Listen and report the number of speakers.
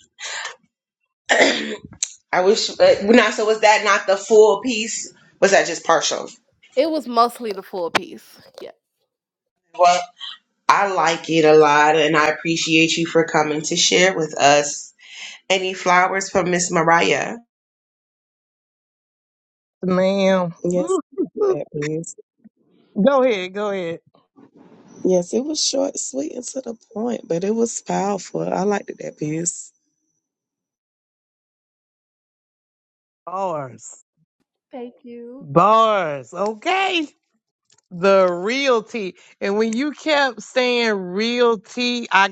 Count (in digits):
4